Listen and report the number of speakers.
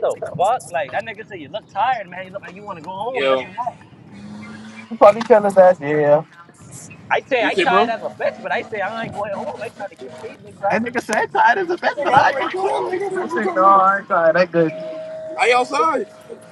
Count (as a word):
three